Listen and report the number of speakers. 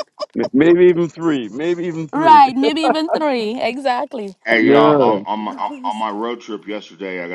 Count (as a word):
three